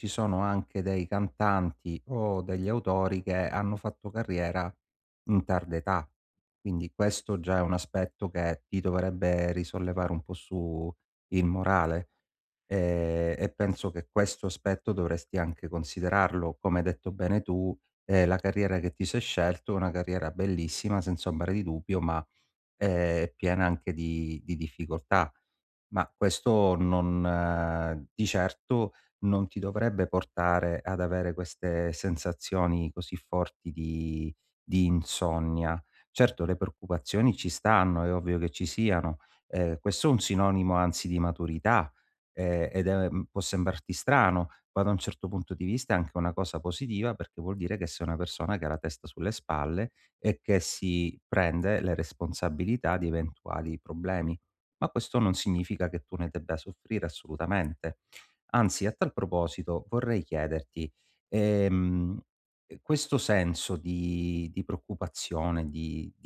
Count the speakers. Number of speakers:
1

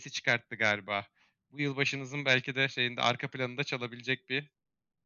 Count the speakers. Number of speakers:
1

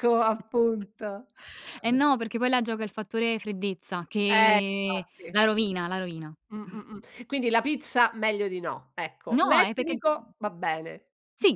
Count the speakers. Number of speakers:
2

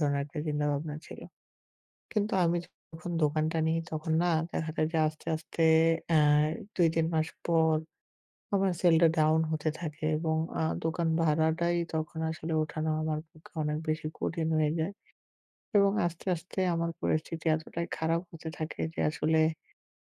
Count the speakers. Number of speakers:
1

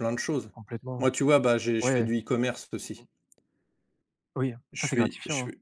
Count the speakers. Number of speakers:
2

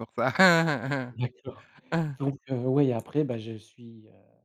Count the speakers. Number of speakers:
2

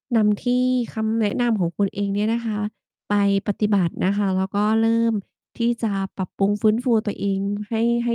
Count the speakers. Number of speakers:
1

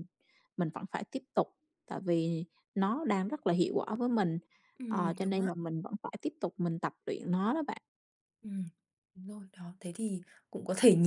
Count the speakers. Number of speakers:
2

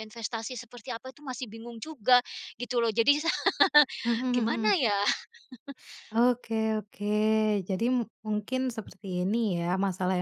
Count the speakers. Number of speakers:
2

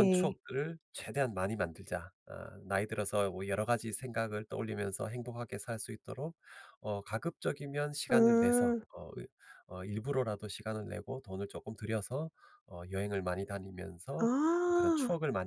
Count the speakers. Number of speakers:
2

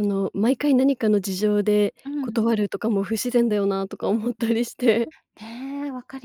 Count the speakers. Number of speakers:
2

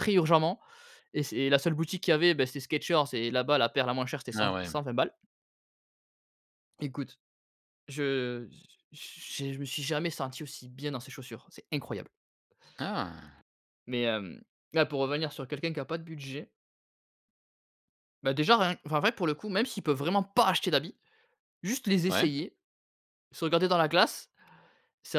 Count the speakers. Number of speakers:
2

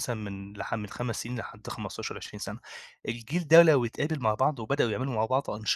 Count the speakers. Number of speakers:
1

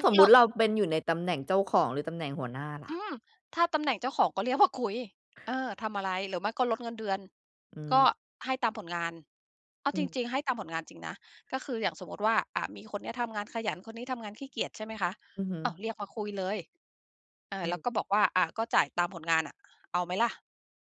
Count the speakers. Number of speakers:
2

